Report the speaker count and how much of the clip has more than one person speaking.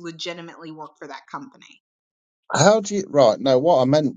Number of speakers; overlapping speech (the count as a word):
two, no overlap